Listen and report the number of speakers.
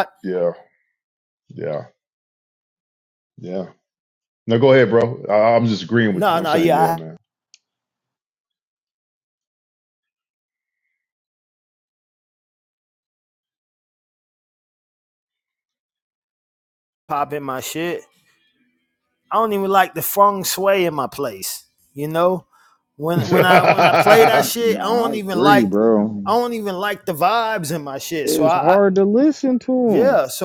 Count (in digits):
3